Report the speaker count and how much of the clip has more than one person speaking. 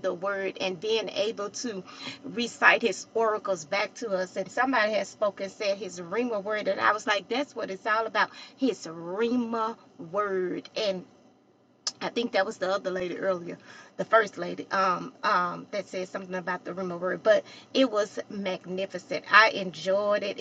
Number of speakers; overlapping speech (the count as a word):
one, no overlap